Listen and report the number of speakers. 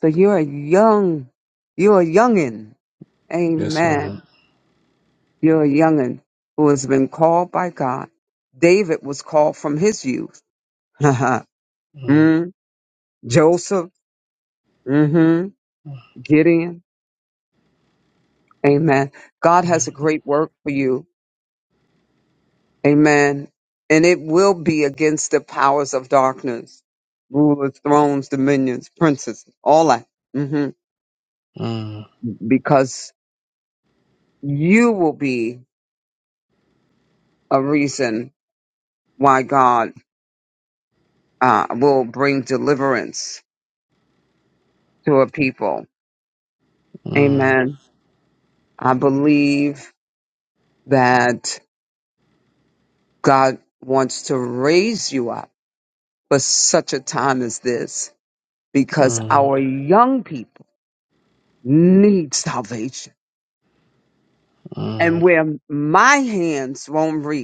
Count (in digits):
2